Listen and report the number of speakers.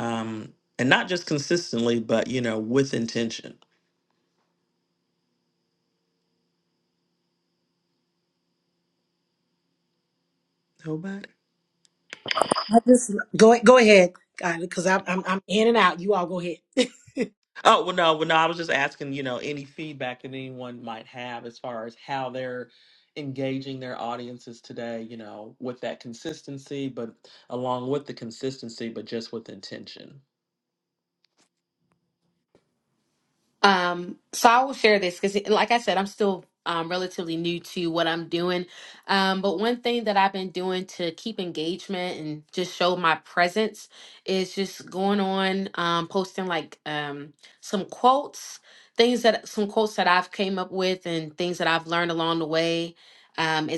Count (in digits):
3